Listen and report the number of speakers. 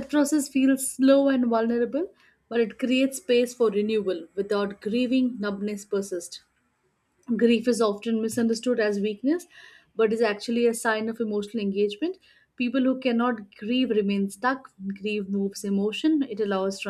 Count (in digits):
1